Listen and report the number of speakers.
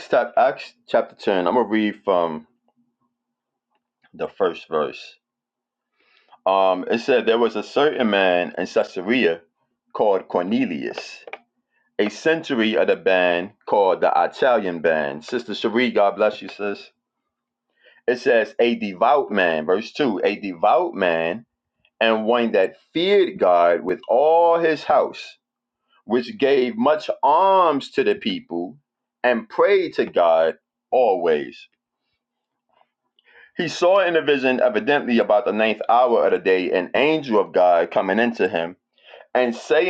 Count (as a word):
one